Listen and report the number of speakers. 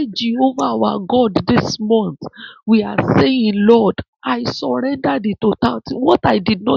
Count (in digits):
1